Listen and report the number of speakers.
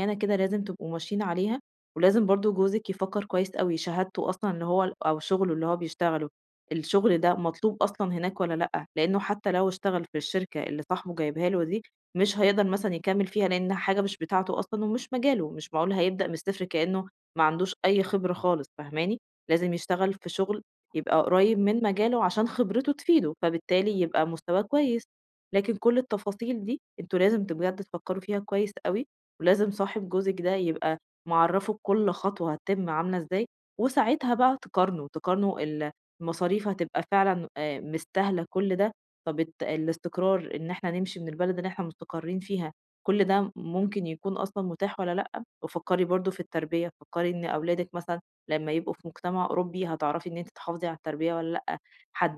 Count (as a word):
one